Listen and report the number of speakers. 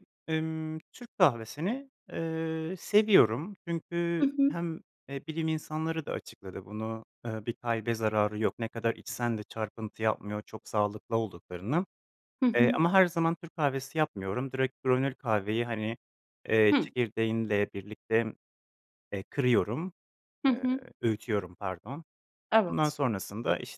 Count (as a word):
two